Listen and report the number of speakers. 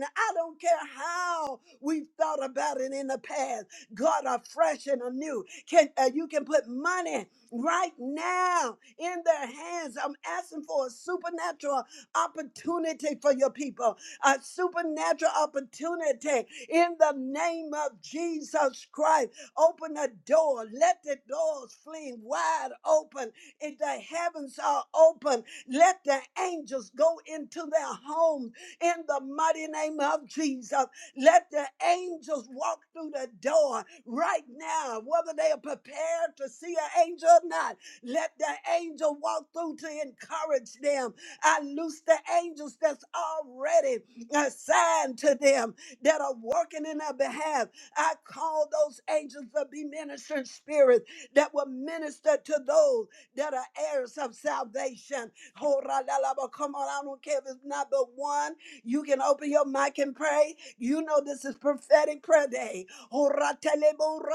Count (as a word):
one